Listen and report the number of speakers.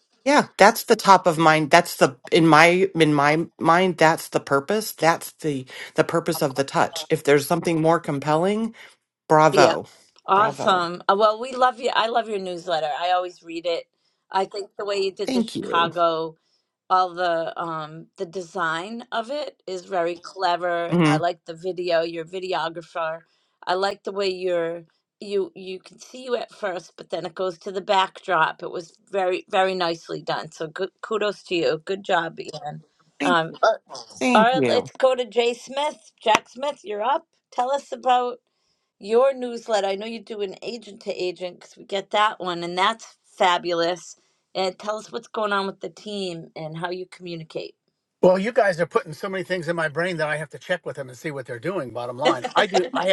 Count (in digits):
3